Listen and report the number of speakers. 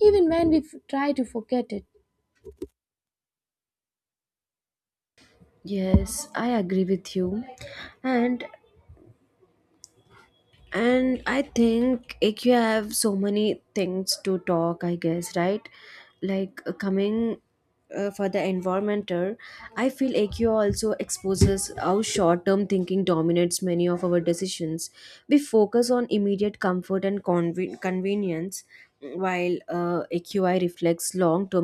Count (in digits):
2